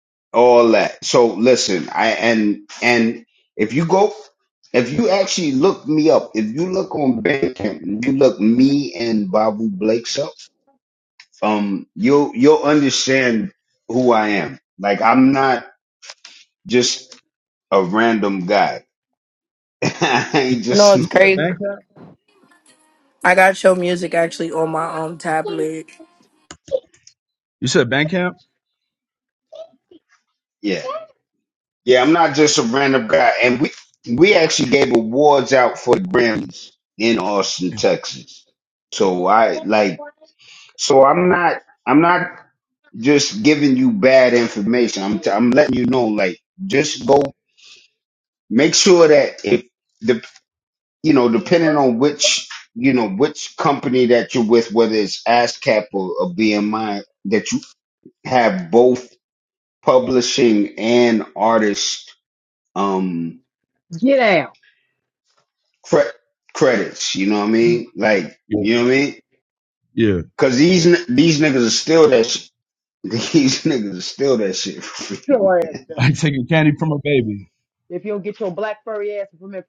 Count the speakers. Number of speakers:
4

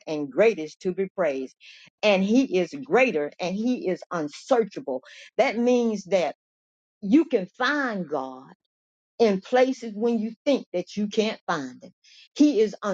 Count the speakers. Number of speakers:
1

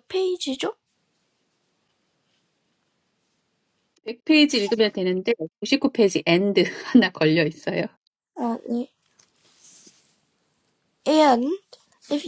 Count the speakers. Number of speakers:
2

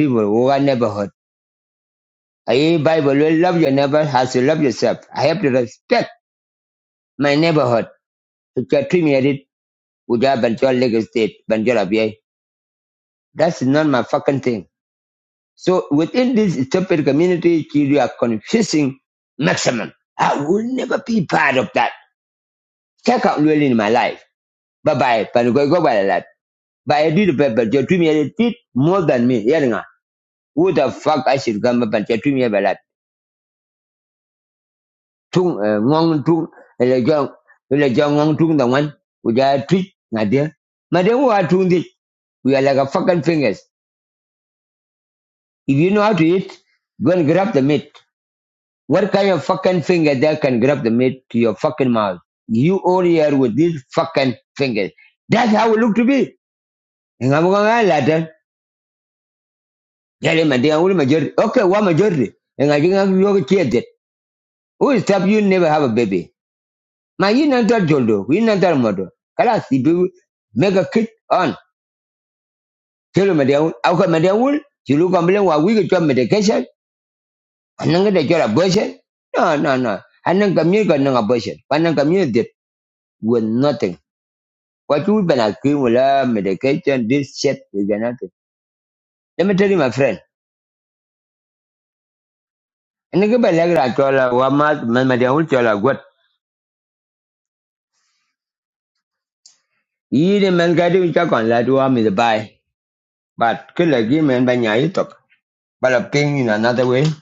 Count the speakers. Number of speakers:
1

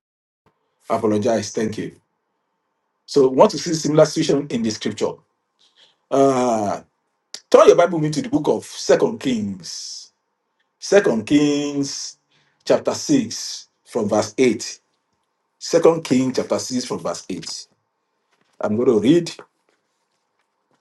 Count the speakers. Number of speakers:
1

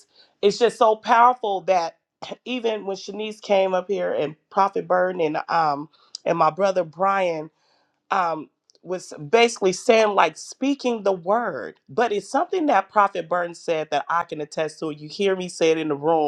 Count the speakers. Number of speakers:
1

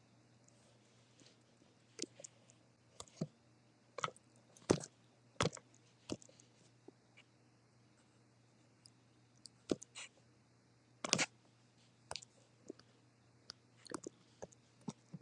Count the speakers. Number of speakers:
0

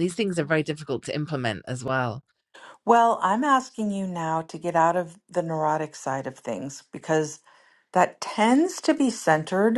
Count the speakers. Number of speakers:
2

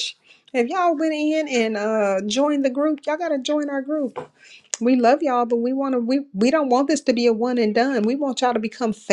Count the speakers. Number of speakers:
1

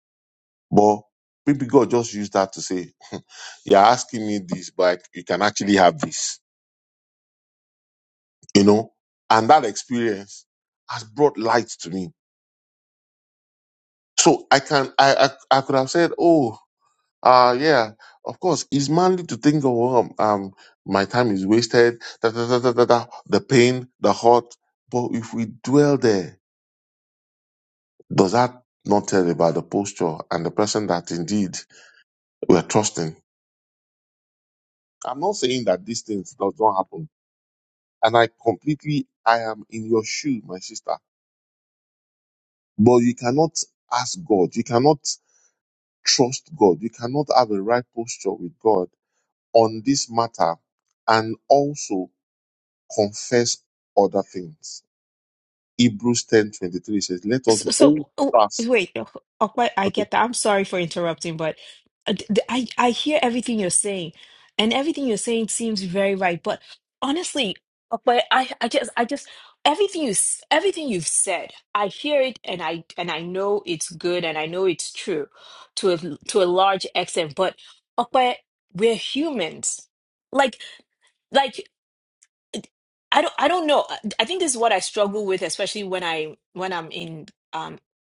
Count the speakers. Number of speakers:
2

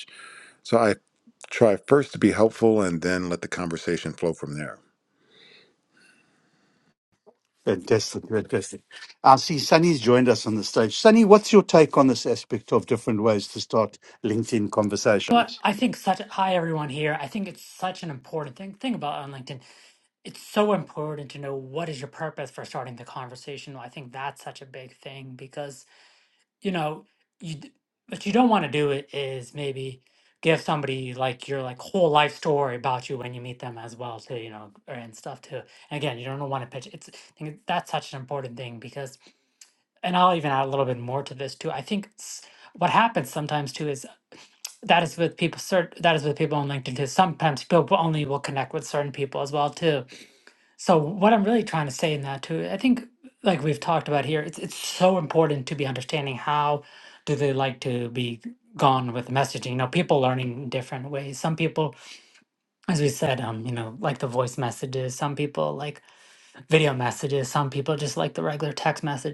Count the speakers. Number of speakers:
3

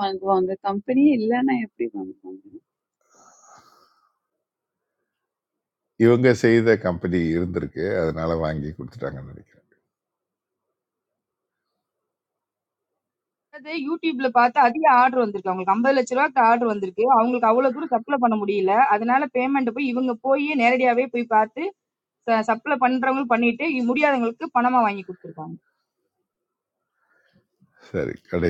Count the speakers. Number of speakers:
3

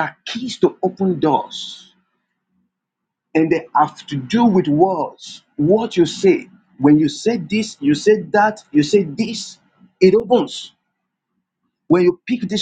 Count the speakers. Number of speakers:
1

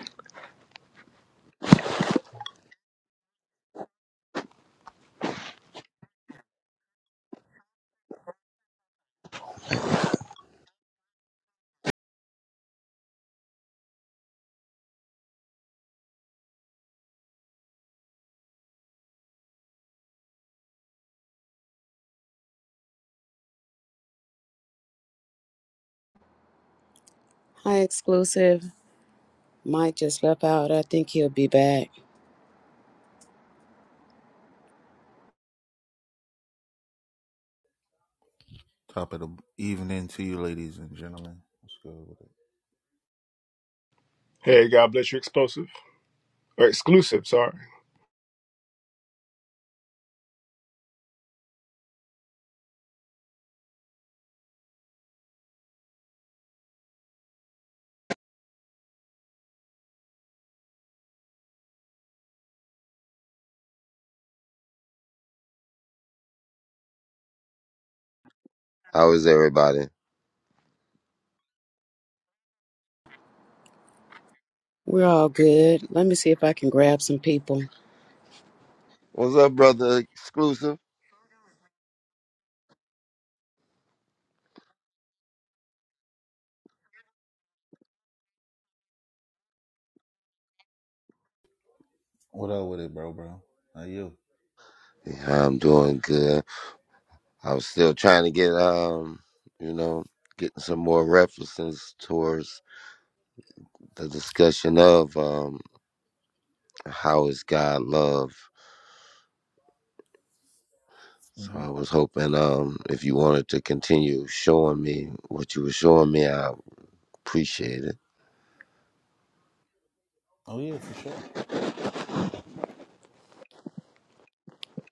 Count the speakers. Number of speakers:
4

